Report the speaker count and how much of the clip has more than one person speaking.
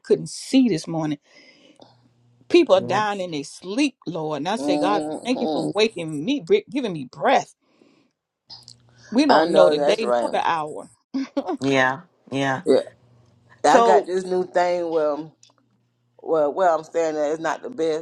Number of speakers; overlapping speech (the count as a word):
three, about 15%